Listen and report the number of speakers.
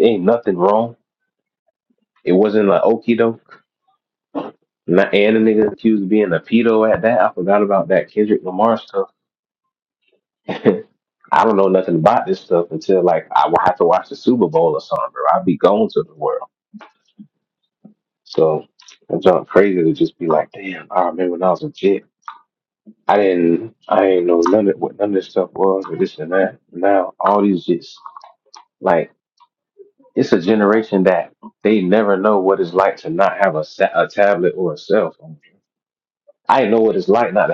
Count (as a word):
one